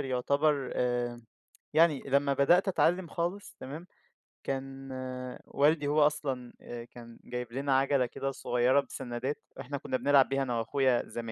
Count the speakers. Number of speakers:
1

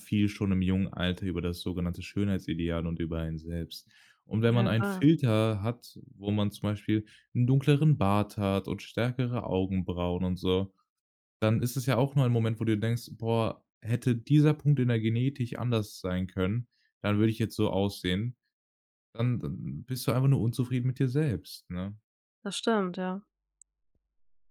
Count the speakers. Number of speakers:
2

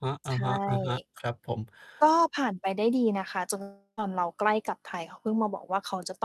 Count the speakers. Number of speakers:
2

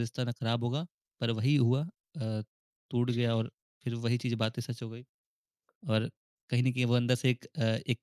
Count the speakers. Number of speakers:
1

